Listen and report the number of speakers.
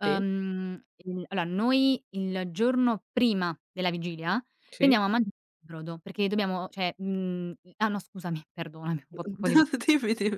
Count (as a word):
two